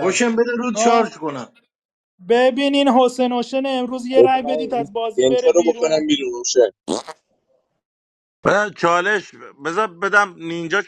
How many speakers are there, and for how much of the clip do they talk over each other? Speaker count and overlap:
four, about 22%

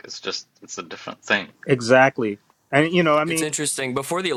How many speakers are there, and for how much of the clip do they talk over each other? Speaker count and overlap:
three, about 6%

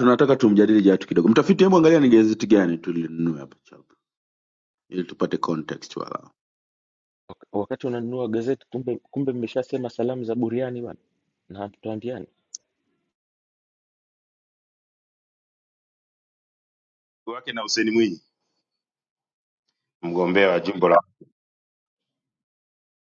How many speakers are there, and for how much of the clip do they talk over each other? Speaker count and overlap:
three, no overlap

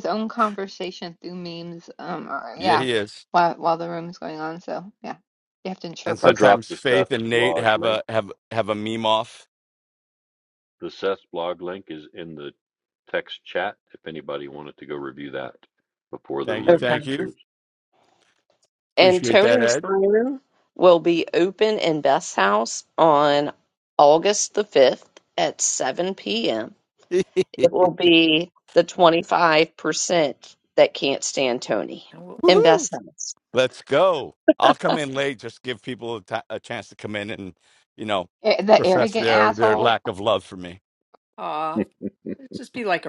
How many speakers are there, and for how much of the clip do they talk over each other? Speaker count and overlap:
five, about 12%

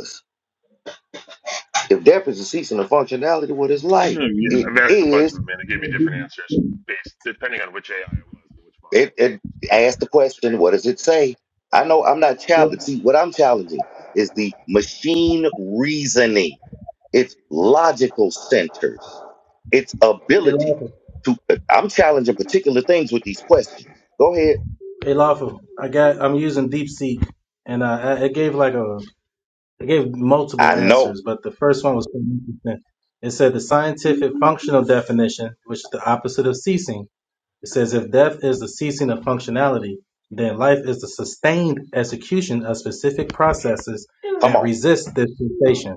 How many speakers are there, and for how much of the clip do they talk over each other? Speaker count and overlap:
three, about 6%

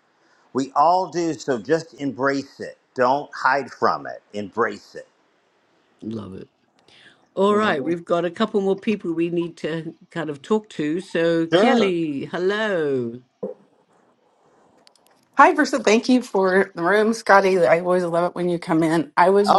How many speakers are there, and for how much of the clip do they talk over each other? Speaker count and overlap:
three, about 5%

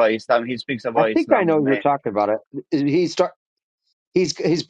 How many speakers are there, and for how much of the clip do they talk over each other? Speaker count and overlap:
two, about 19%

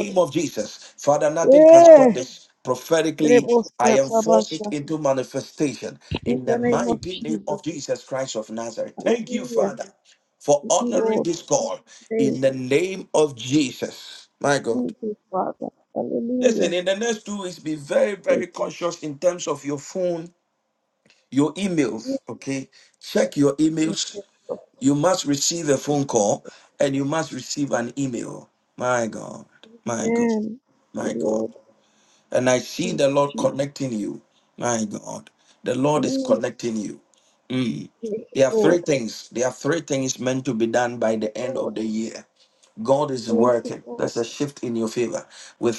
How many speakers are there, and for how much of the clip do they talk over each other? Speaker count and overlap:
two, about 21%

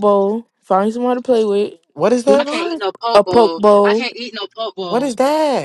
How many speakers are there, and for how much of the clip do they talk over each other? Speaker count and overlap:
three, about 29%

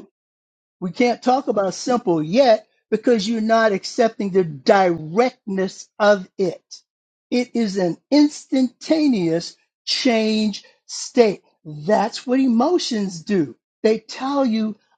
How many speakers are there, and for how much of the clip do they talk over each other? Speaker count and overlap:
one, no overlap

